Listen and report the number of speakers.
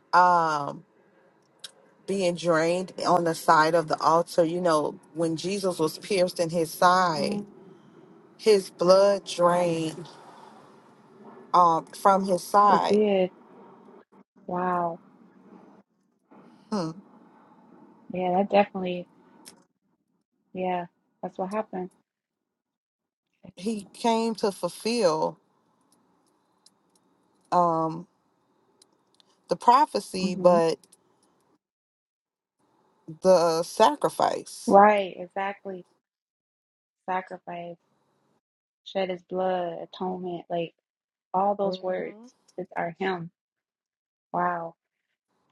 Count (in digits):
2